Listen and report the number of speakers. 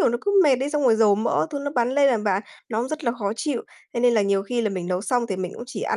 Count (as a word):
one